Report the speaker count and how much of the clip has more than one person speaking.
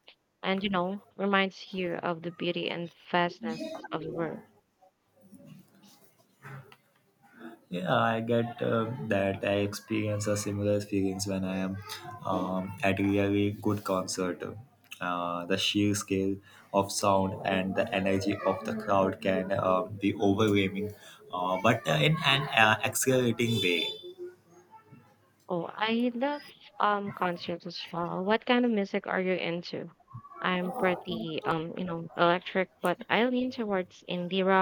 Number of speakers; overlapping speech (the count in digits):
2, no overlap